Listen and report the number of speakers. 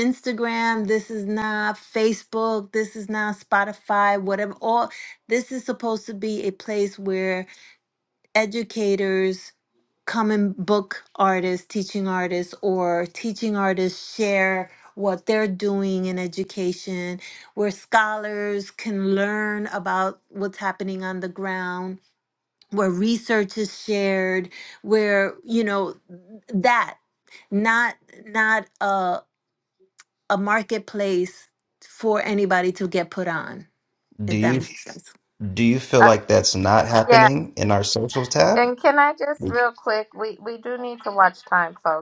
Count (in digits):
3